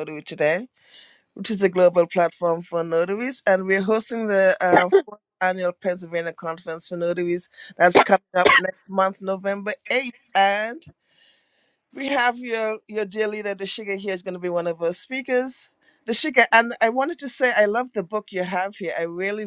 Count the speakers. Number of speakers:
one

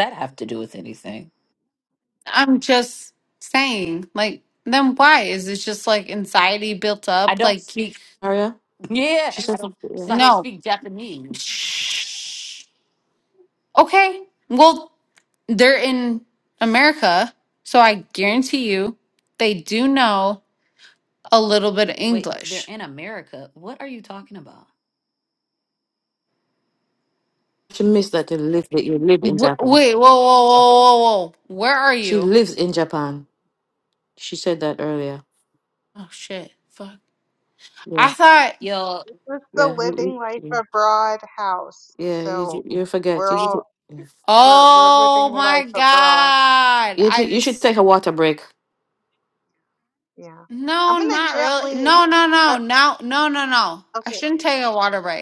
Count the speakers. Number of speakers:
four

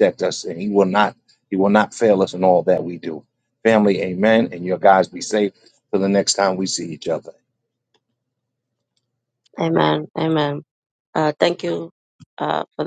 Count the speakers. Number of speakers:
two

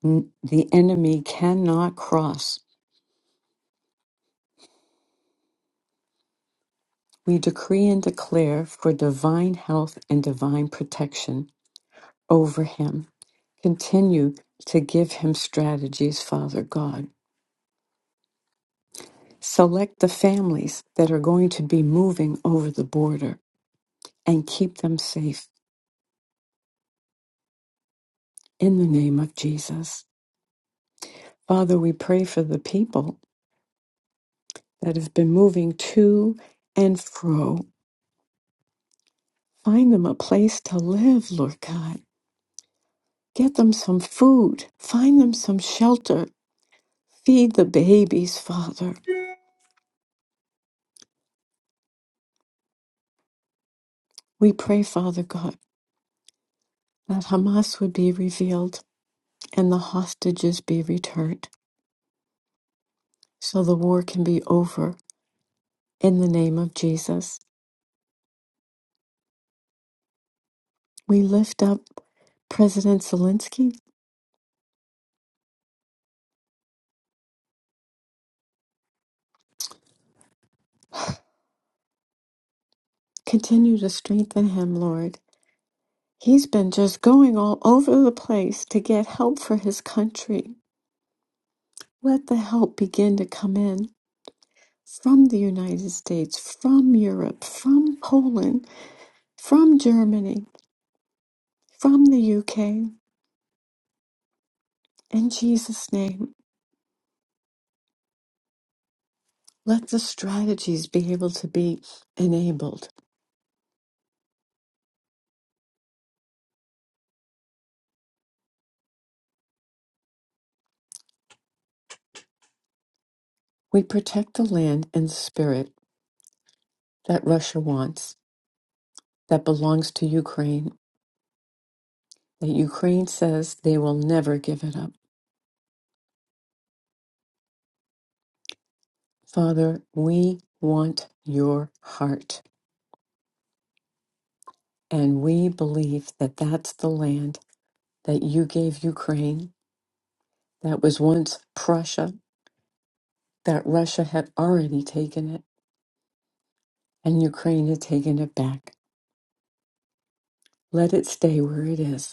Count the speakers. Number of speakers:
one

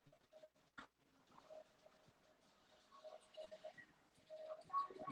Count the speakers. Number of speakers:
zero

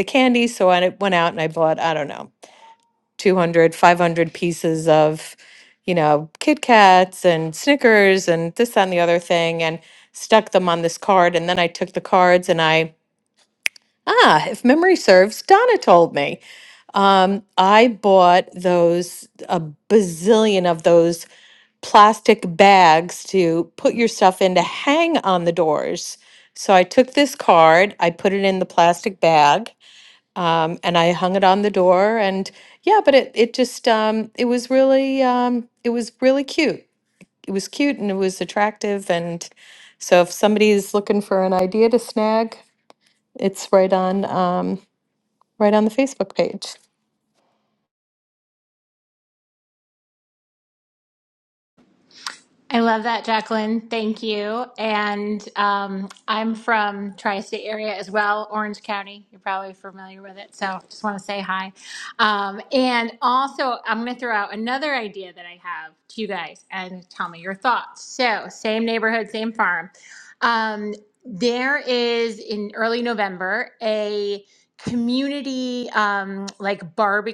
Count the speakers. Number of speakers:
two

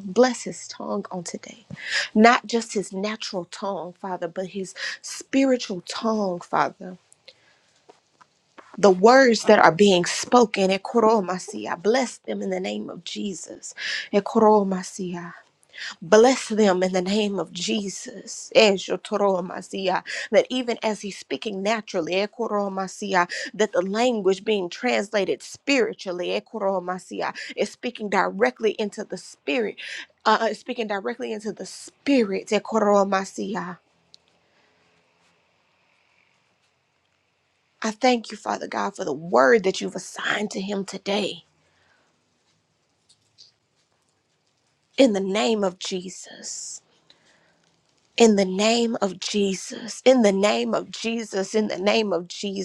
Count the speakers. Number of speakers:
one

